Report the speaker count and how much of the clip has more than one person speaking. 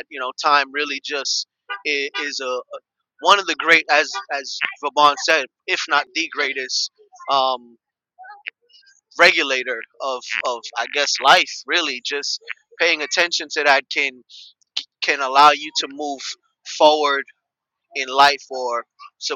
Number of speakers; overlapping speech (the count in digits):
1, no overlap